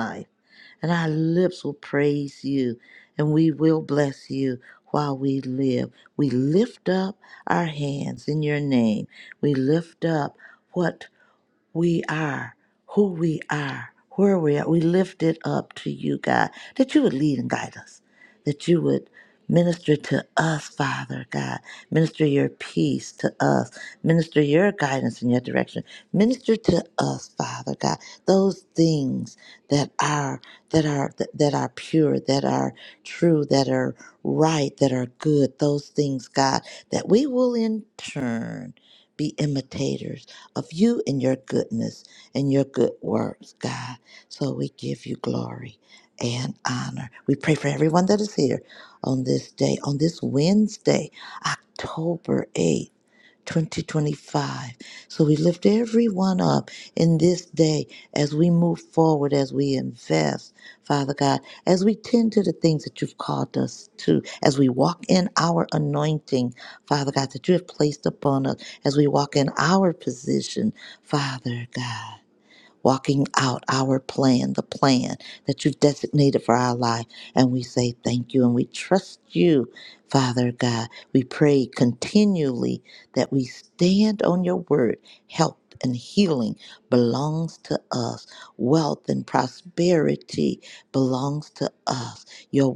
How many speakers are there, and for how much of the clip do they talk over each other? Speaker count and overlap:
1, no overlap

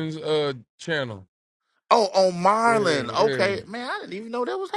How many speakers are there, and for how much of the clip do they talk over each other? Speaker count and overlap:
2, about 19%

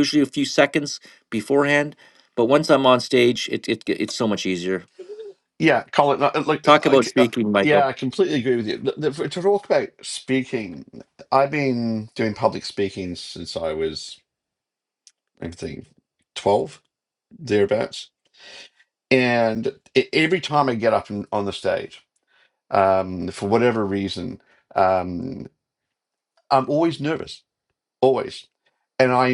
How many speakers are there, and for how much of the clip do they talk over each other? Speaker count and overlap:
2, about 3%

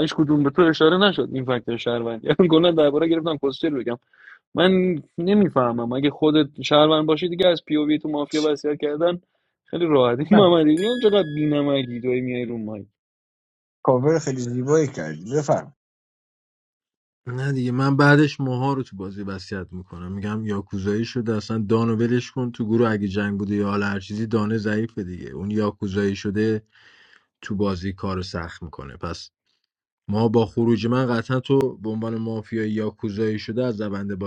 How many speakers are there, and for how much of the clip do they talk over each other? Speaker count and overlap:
3, no overlap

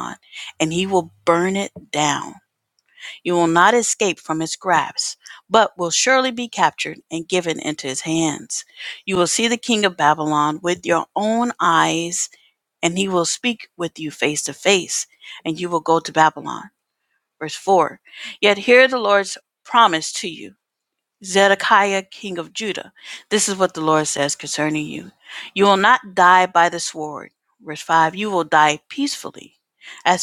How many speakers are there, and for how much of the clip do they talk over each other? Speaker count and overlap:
1, no overlap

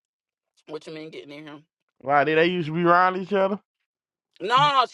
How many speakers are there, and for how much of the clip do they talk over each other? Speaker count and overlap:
2, no overlap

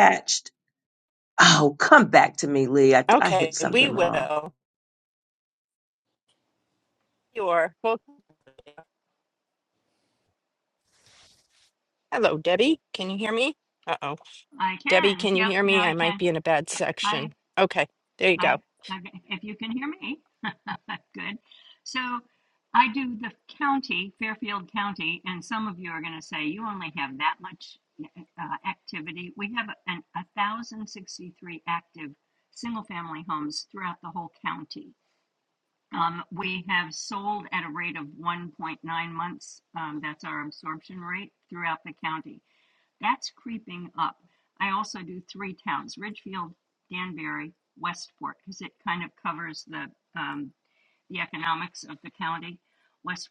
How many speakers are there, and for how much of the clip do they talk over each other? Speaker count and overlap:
3, about 6%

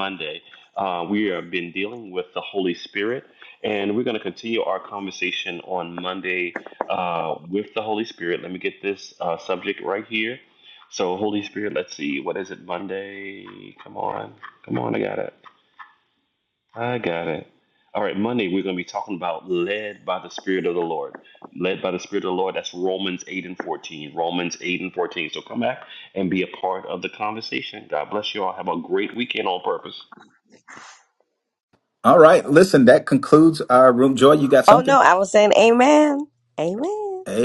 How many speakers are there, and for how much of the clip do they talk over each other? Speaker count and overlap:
3, about 1%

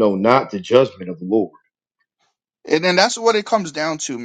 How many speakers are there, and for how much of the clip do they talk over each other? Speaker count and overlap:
2, no overlap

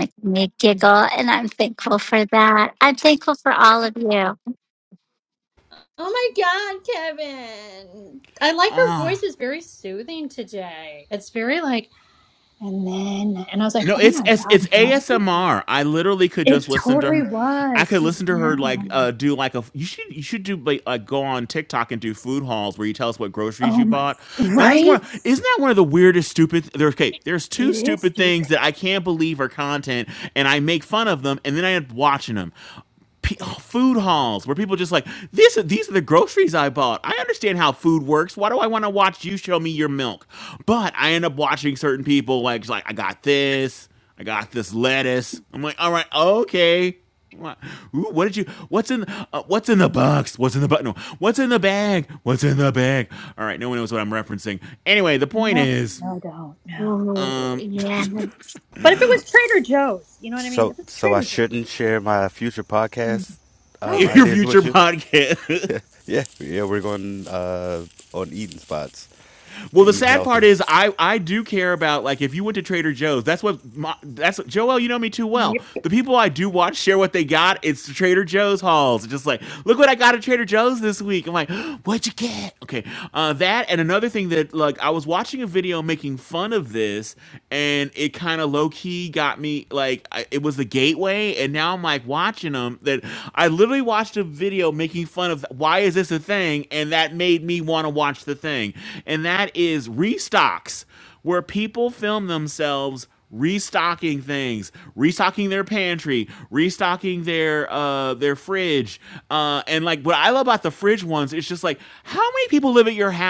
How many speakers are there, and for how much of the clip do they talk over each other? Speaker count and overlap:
4, about 9%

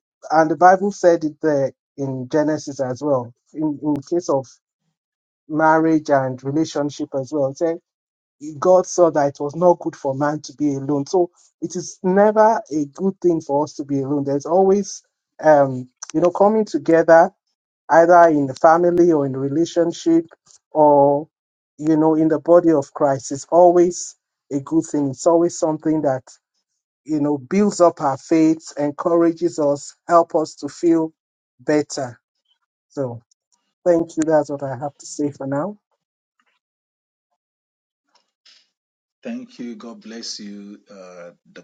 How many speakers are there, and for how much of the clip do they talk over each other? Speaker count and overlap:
2, no overlap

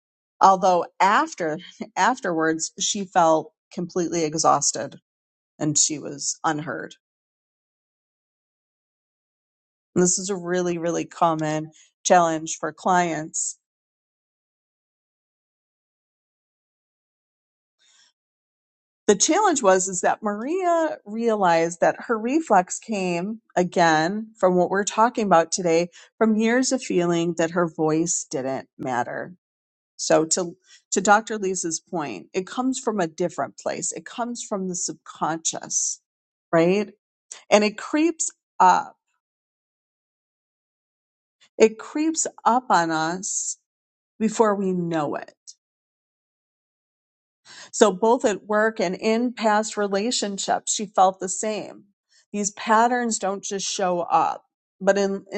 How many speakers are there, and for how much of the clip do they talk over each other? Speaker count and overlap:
1, no overlap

